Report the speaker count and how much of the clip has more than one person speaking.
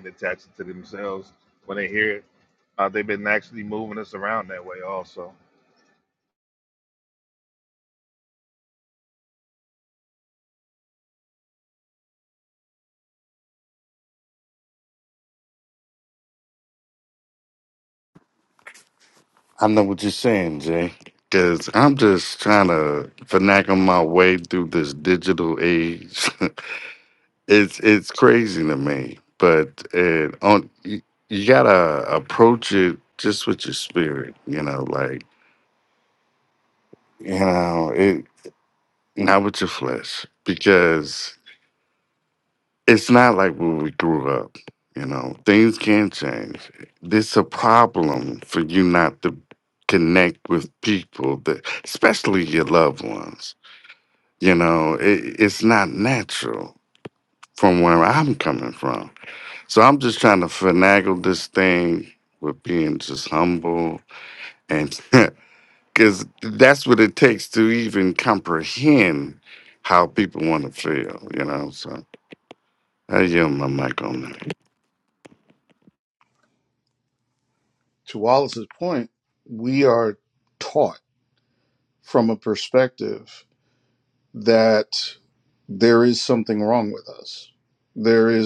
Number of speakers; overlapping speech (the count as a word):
three, no overlap